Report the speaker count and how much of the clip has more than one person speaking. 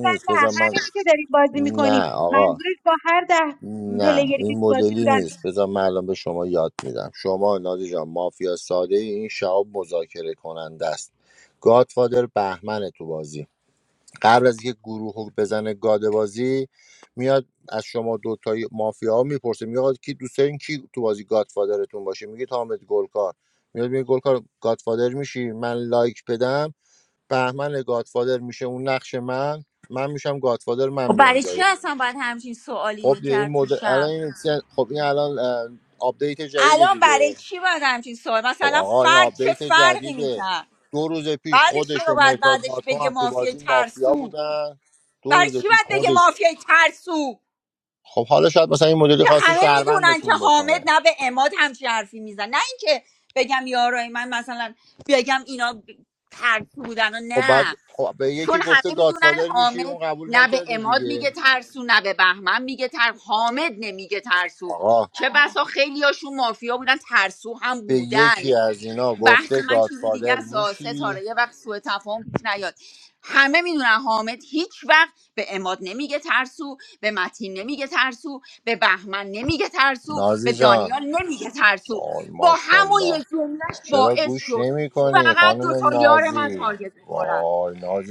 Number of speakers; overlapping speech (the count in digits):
3, about 26%